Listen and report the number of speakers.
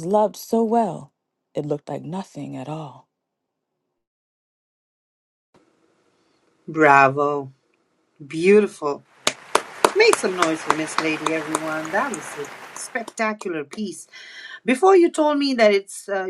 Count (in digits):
2